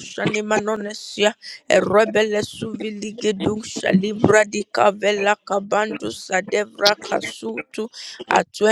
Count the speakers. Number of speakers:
1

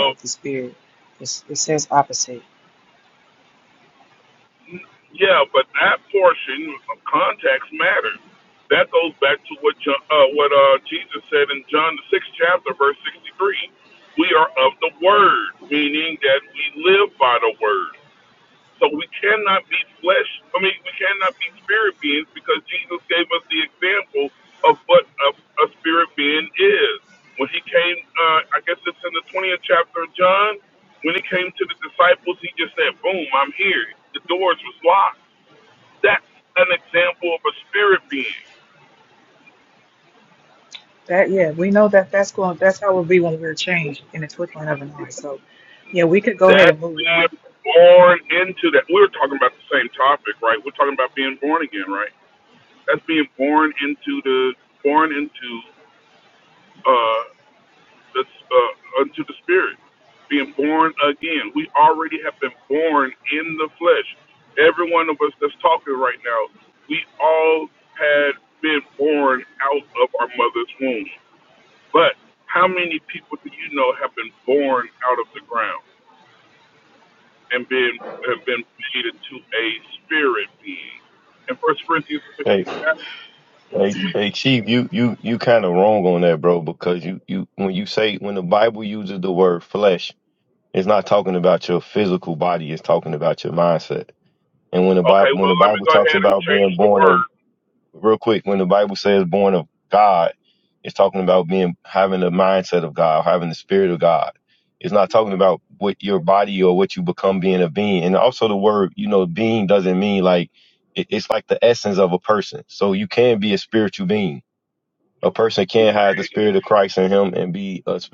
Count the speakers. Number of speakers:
3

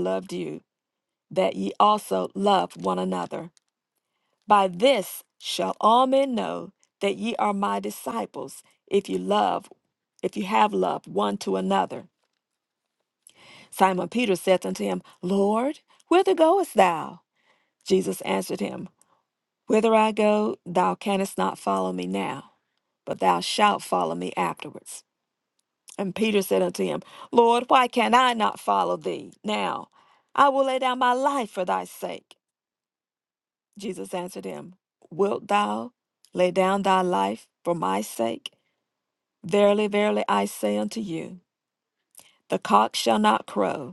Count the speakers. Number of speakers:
1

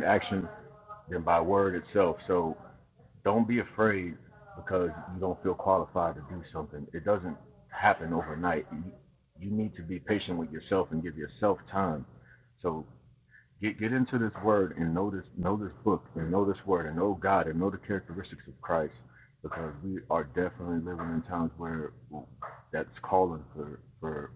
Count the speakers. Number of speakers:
1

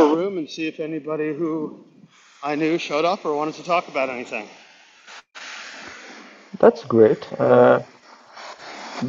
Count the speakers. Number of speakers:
2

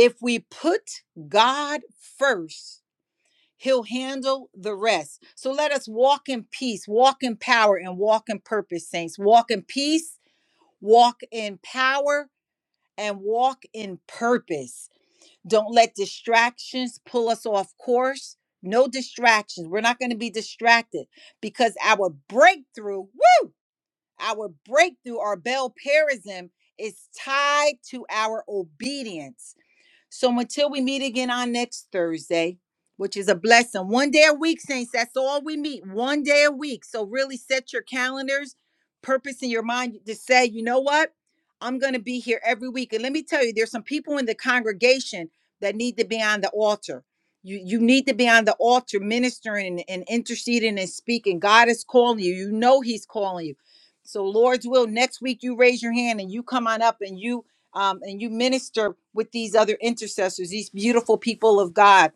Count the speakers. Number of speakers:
1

